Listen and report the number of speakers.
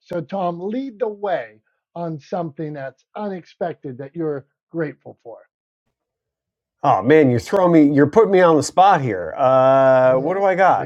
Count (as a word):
two